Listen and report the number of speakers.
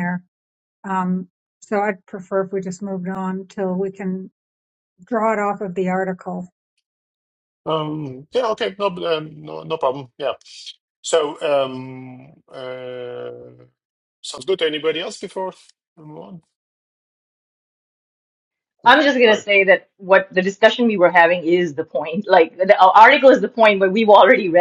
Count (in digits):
3